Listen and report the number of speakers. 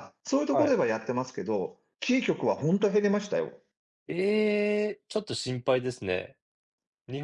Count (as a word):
two